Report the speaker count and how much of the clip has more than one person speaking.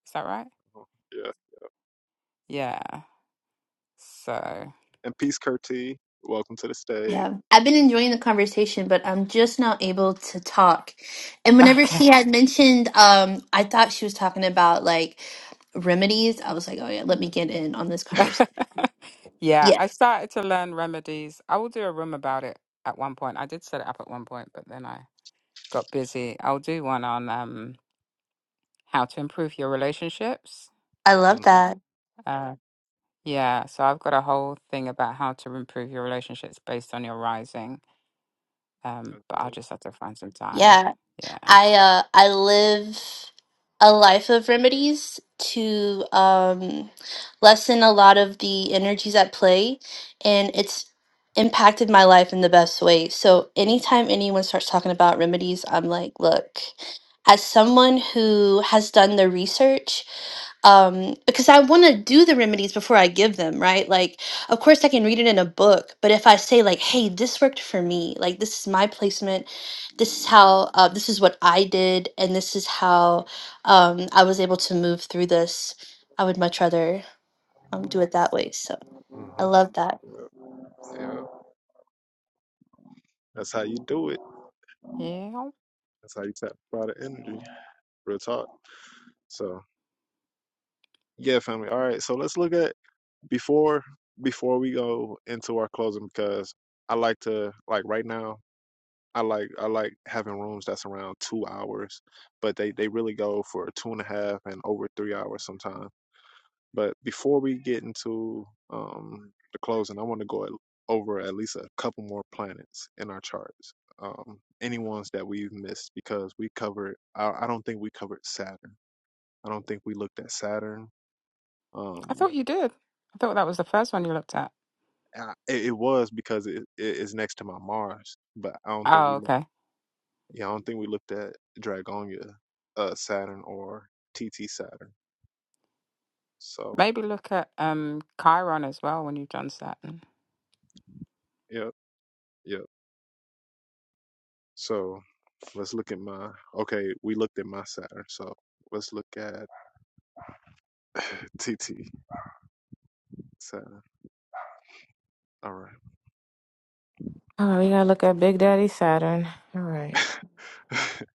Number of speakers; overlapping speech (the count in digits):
4, about 2%